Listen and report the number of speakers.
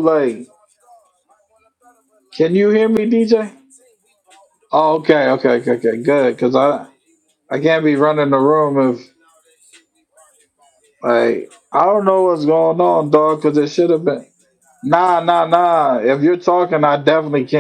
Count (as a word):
one